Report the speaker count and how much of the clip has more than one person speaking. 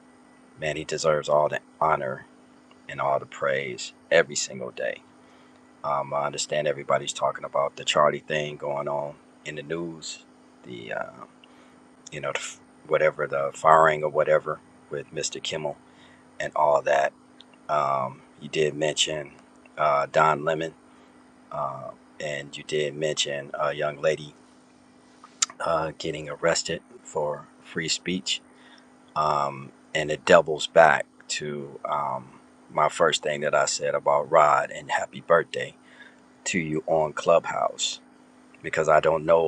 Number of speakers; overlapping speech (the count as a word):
one, no overlap